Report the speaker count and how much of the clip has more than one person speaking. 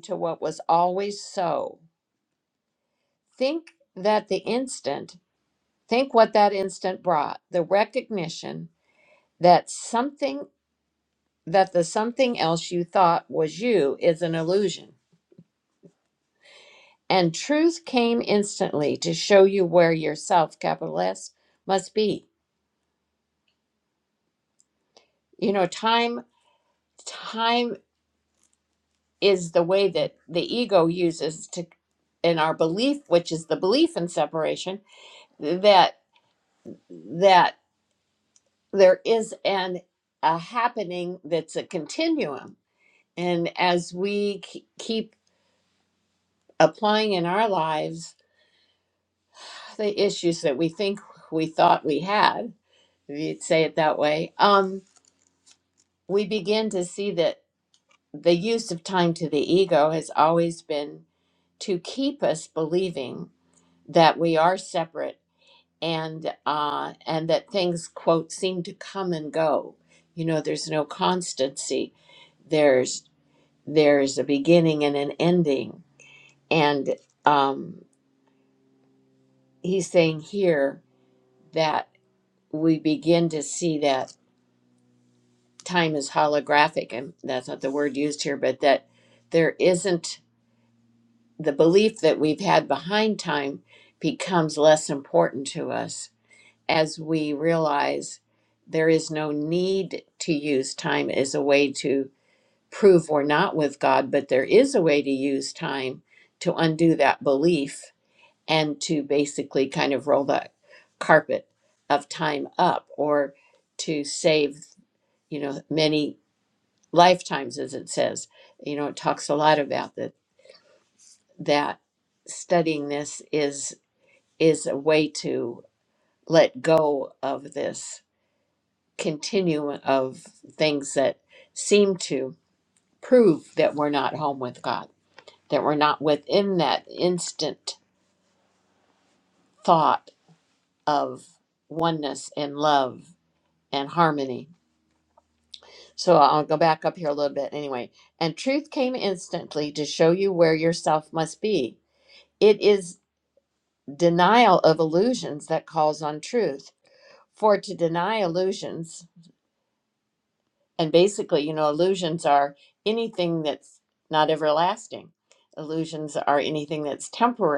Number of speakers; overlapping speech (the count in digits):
1, no overlap